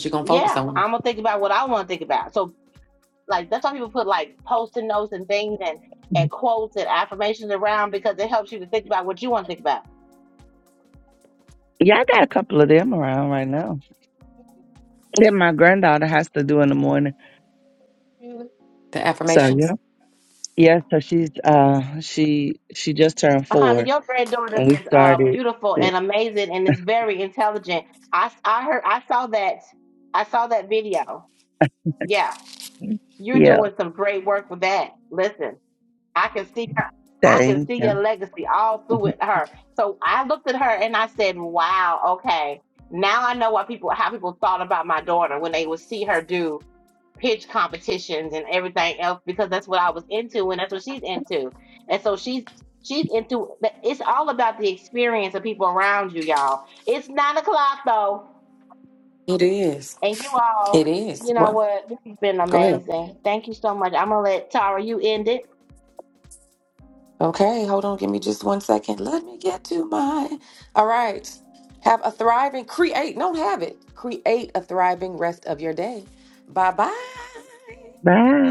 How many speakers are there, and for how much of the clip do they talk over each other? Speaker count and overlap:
three, about 6%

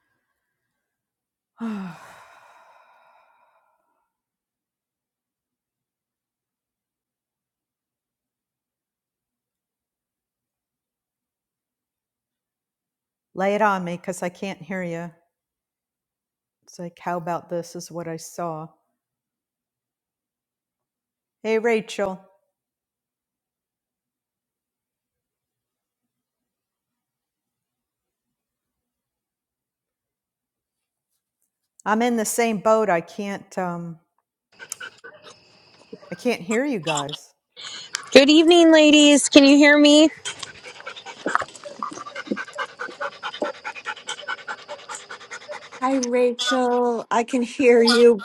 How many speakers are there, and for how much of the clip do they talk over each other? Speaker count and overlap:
three, no overlap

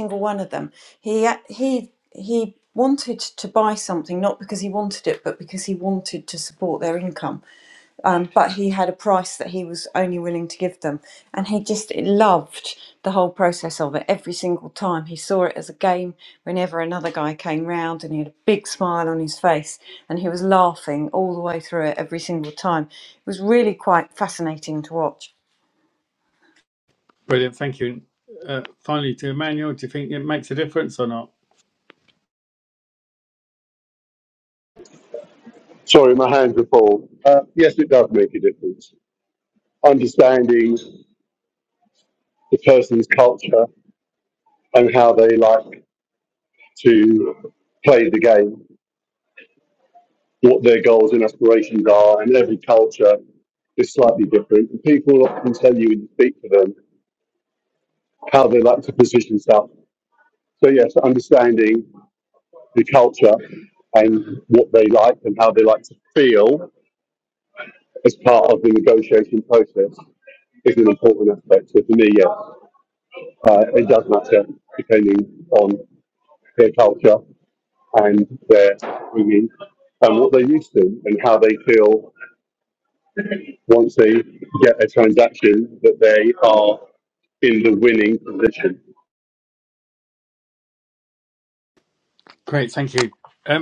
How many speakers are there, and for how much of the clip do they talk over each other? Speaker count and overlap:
three, no overlap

